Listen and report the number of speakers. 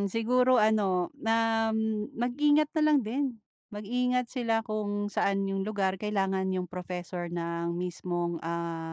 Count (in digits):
1